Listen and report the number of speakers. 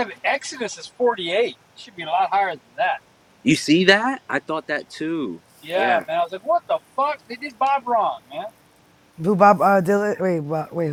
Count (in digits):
3